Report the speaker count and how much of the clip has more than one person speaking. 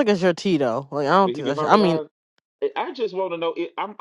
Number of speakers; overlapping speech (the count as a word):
two, about 19%